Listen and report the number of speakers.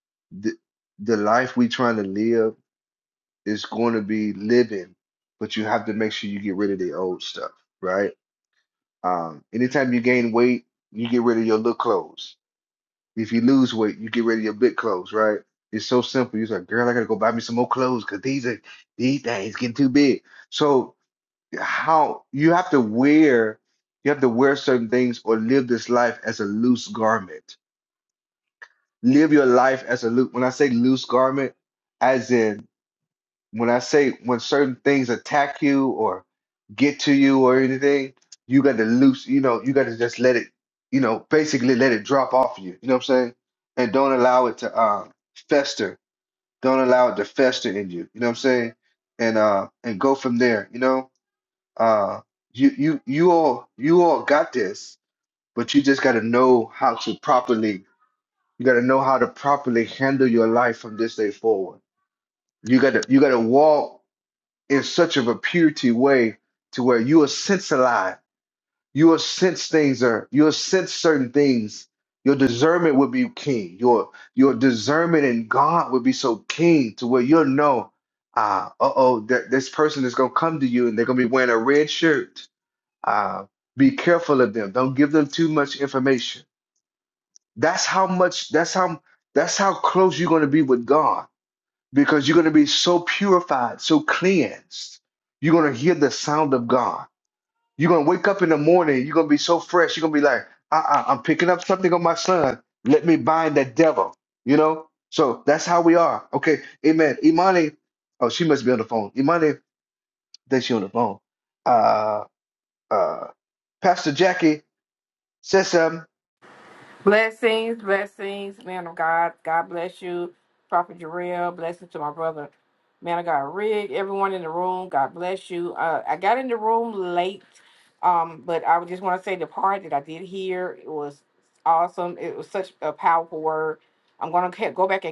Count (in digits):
2